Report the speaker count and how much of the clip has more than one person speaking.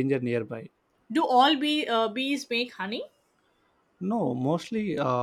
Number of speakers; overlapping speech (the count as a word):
two, no overlap